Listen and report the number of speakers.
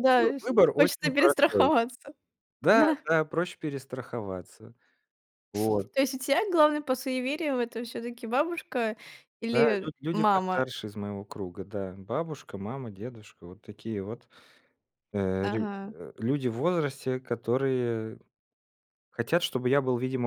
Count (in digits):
2